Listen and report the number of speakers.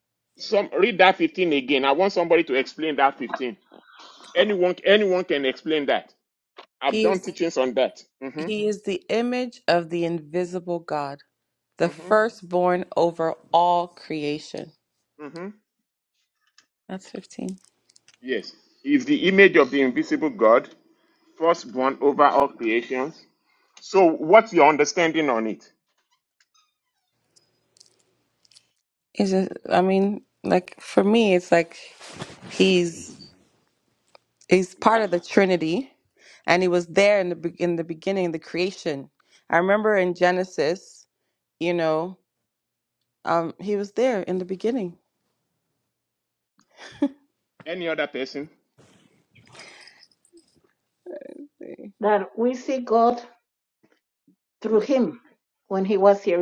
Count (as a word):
three